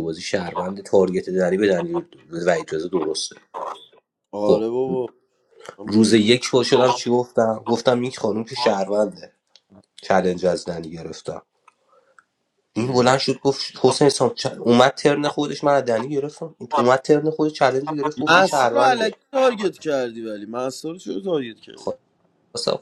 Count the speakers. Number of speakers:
2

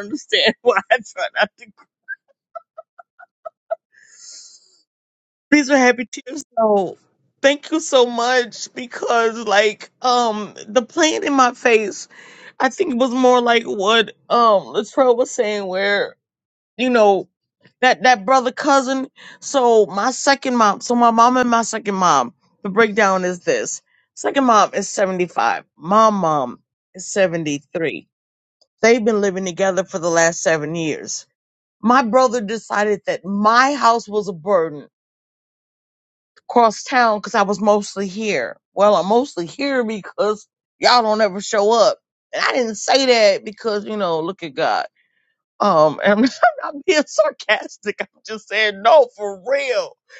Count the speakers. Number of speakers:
1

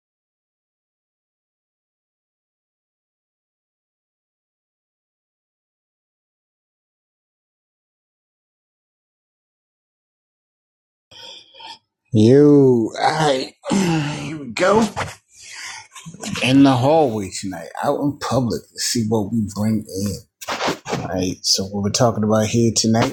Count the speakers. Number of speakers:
1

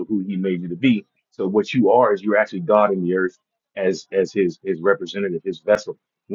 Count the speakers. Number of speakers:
1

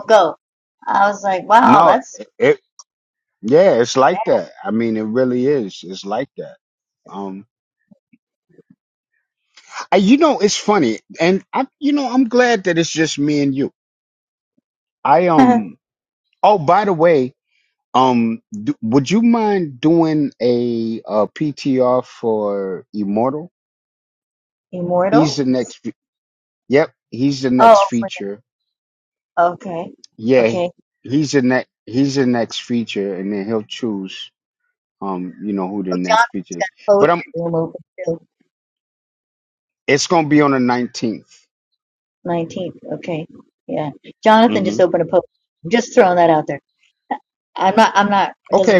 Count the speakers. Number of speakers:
2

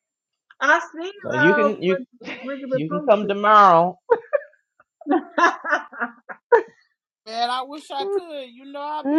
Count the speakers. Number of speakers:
3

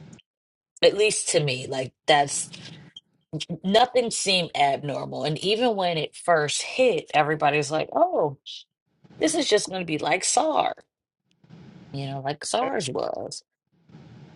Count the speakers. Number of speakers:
1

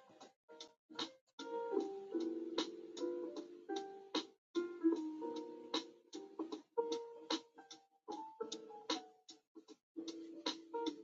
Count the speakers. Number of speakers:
0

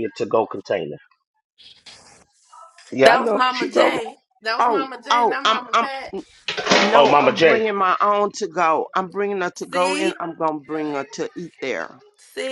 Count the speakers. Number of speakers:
3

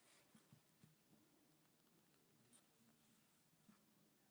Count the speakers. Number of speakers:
0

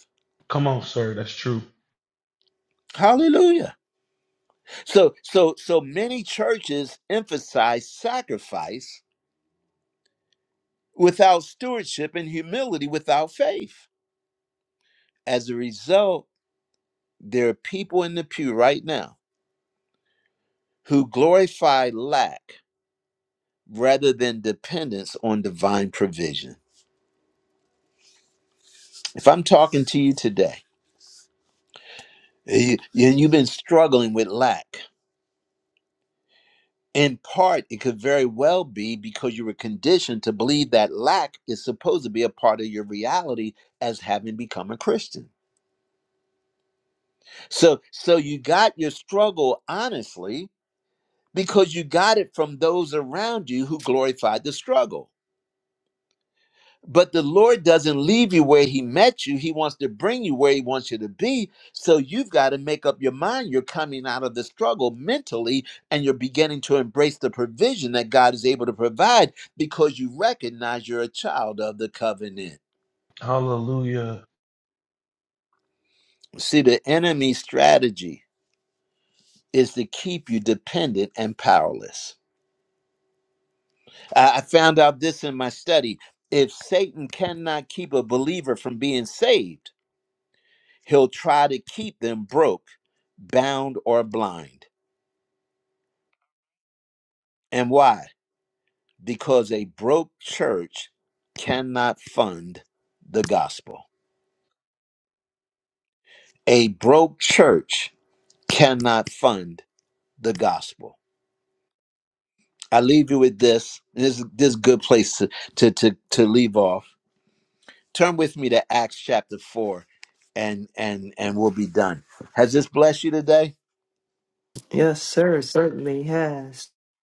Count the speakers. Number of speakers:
3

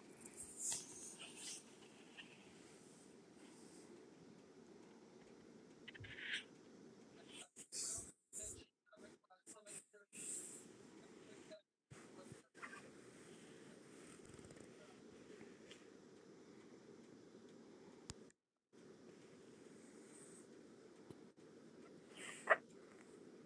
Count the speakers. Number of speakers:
0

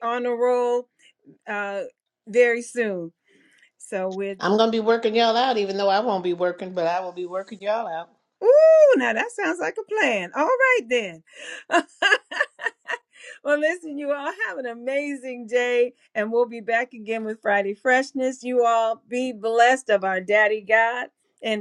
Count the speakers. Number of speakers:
2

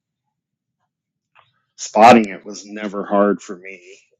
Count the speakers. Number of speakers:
1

